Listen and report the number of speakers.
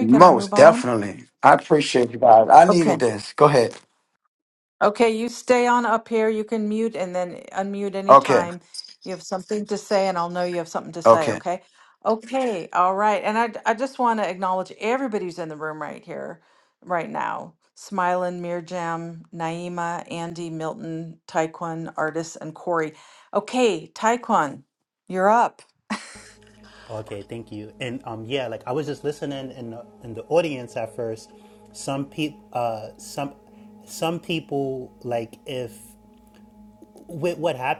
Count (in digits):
3